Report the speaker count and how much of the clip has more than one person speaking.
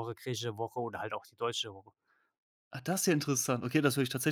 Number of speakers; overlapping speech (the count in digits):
2, no overlap